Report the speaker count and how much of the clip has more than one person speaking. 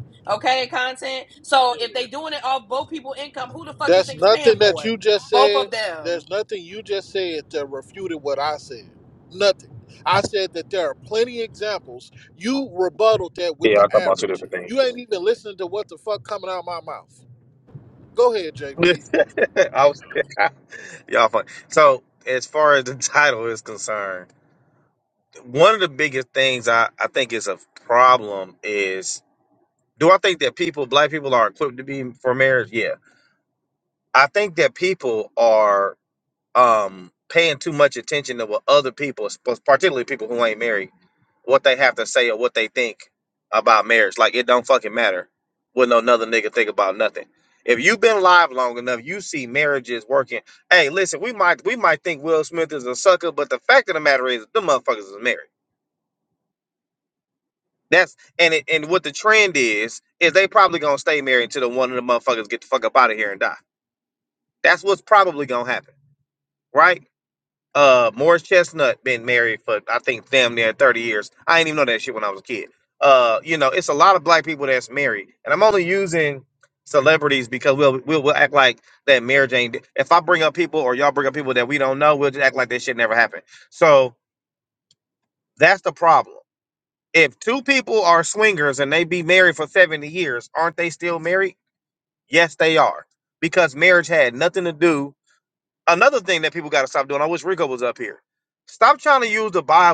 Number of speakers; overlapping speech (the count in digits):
3, about 3%